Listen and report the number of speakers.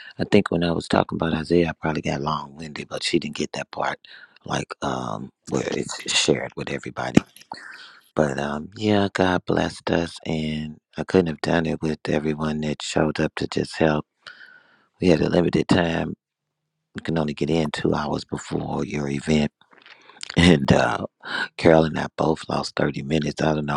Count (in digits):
1